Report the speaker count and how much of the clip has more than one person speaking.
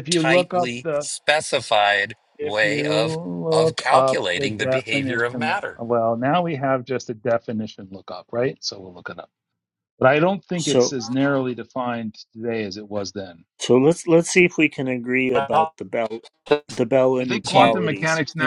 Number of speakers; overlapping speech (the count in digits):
3, about 31%